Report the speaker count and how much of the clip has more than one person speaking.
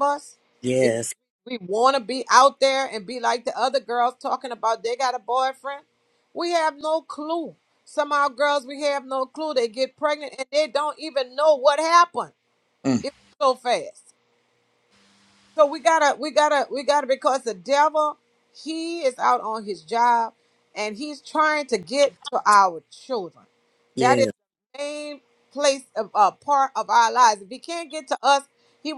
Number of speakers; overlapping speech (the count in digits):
2, about 1%